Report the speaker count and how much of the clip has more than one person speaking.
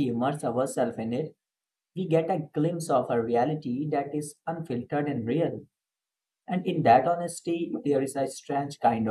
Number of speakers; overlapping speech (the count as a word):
one, no overlap